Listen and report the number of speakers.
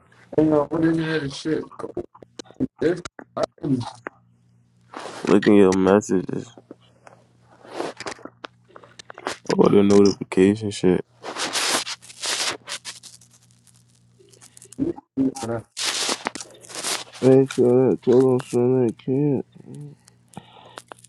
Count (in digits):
3